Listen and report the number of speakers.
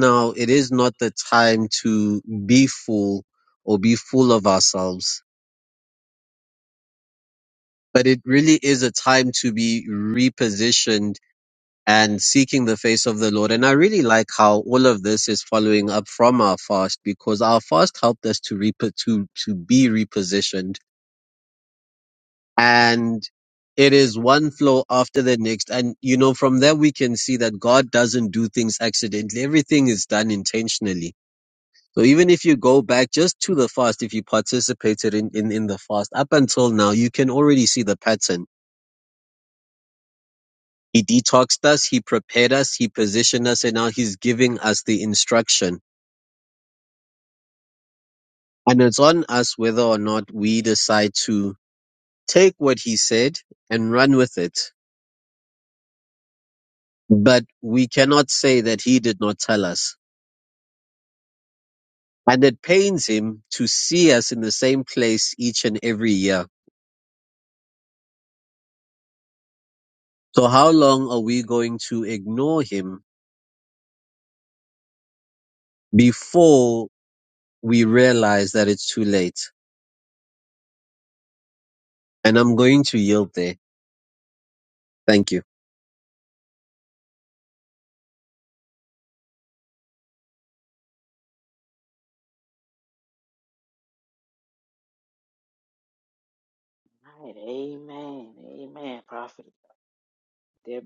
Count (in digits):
2